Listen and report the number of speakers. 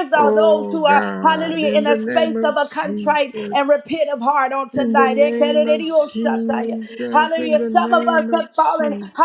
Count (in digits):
2